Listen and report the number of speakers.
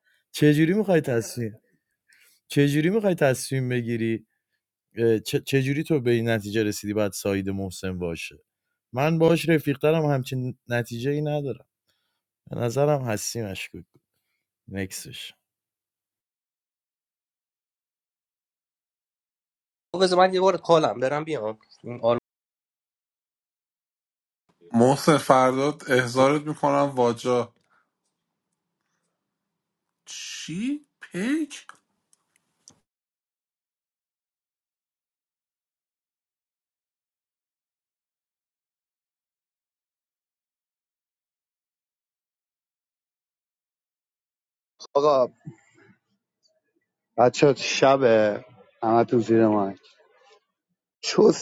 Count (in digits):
4